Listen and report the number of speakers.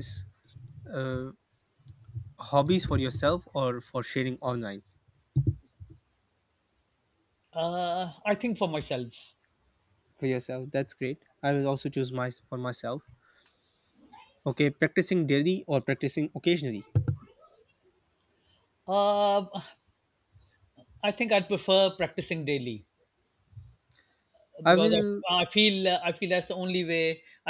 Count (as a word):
two